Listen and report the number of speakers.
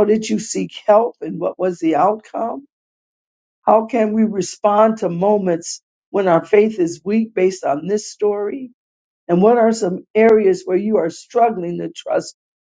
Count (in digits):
1